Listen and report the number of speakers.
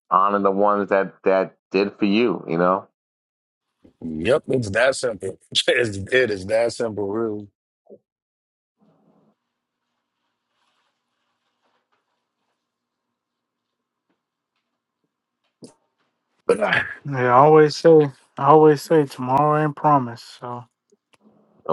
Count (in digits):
3